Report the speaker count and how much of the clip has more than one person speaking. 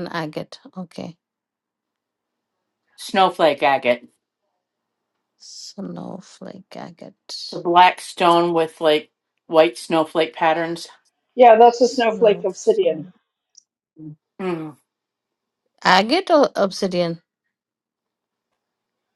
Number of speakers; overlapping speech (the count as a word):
three, about 2%